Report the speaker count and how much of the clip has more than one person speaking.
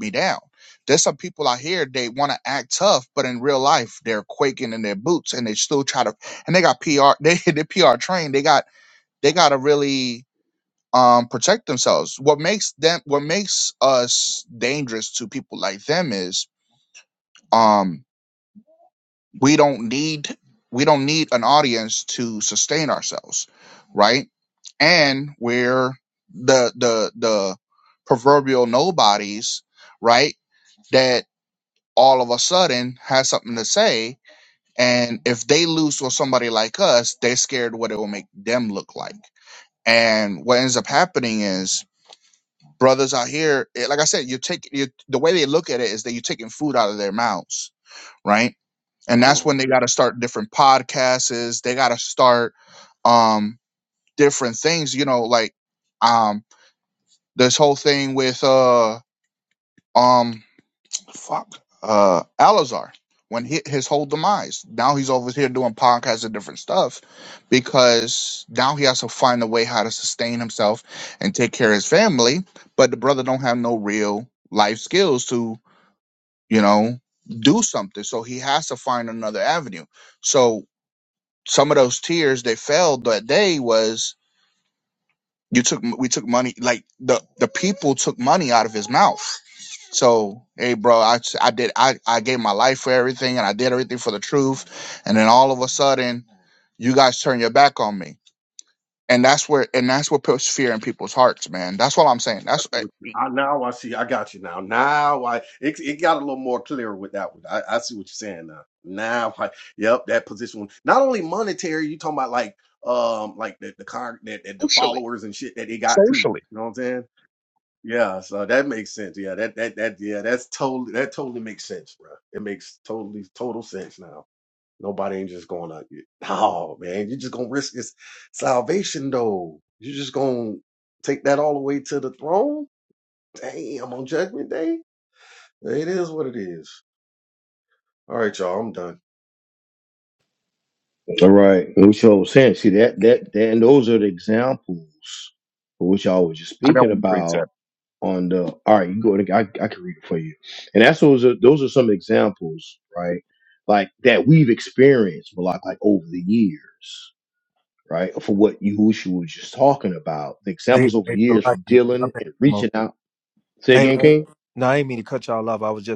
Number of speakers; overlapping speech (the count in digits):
4, about 2%